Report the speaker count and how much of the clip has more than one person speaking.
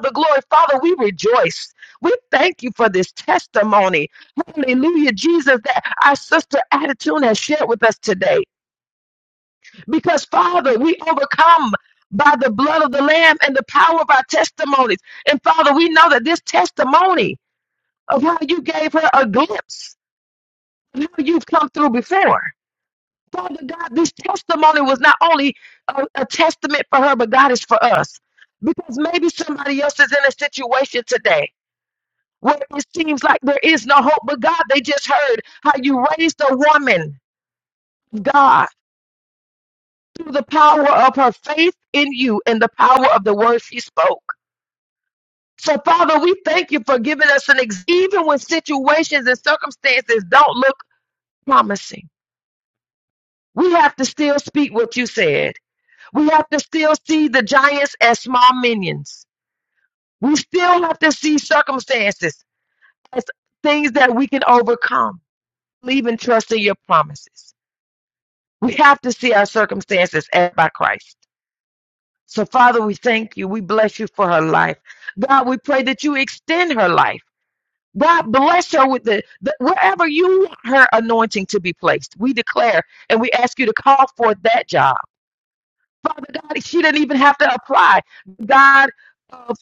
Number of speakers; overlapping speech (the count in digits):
1, no overlap